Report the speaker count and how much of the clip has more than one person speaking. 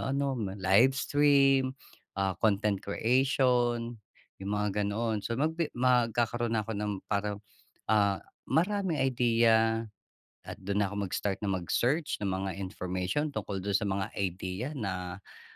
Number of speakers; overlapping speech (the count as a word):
one, no overlap